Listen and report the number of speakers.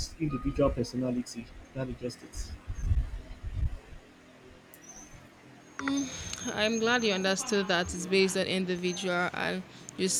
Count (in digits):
2